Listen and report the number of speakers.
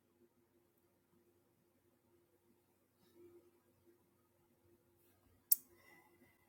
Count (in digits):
0